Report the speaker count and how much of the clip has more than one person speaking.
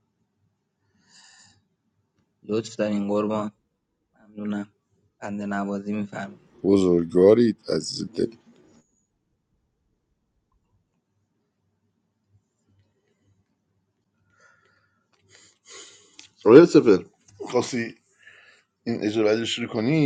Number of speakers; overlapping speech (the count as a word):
three, no overlap